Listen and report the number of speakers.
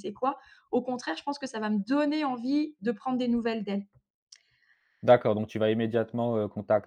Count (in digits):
2